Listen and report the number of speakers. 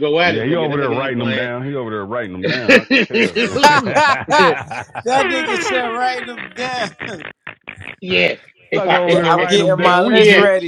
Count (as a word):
three